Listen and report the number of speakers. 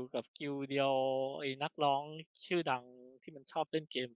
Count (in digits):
1